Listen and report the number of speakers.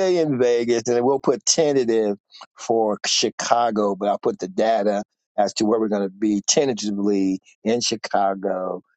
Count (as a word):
one